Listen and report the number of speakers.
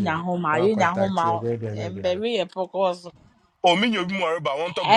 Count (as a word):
three